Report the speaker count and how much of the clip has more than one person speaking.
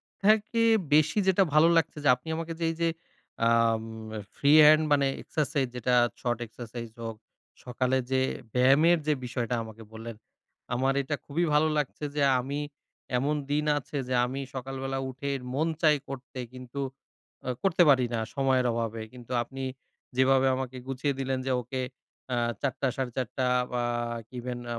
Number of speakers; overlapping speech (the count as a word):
one, no overlap